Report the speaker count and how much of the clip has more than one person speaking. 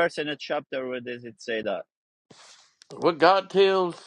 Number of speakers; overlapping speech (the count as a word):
two, no overlap